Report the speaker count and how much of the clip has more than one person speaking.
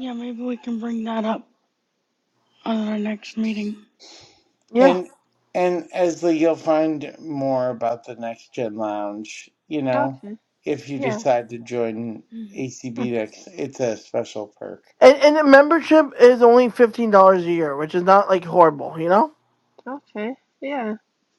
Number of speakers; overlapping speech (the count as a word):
four, about 4%